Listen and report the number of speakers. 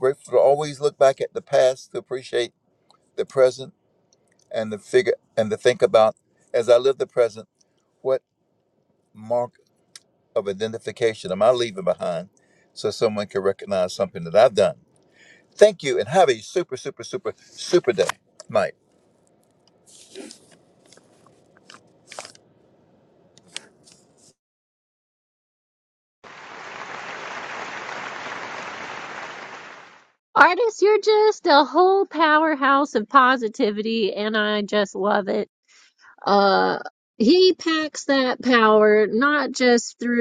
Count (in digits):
2